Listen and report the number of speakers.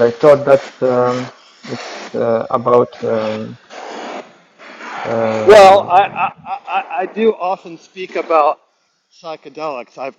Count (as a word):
two